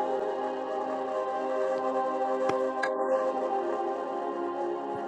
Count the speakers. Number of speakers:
zero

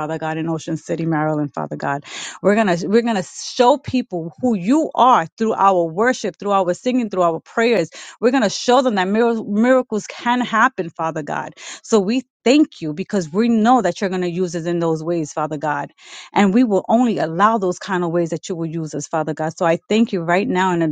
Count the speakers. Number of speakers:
one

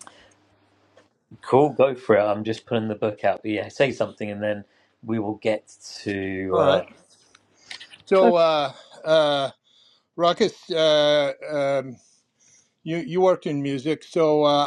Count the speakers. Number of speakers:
two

